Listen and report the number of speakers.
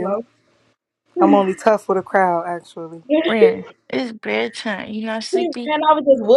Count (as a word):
three